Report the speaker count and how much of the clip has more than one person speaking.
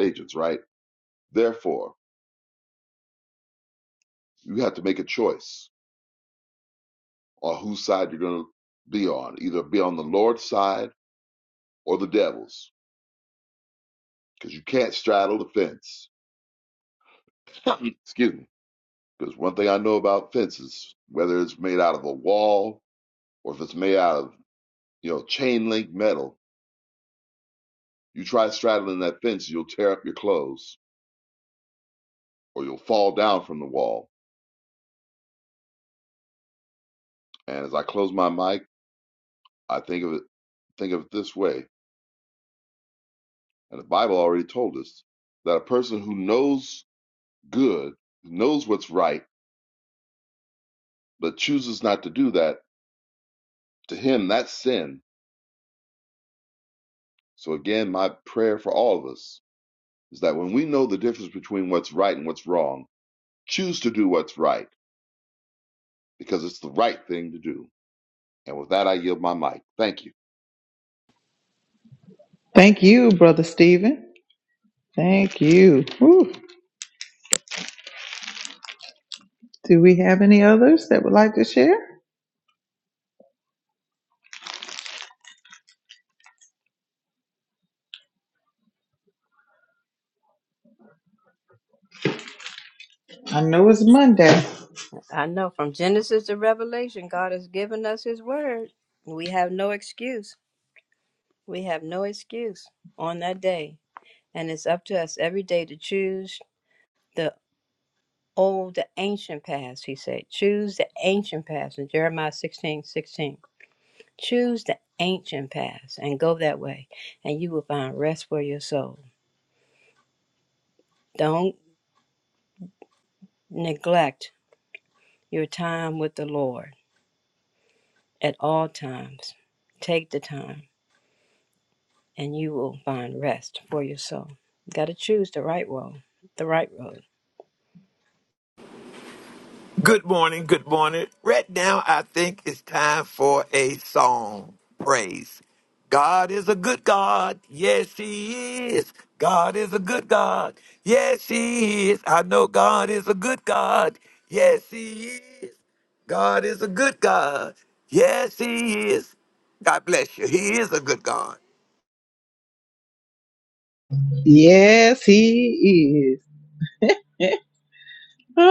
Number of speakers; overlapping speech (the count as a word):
four, no overlap